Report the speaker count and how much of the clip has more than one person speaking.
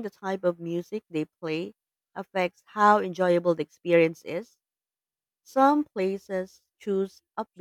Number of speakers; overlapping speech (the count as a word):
one, no overlap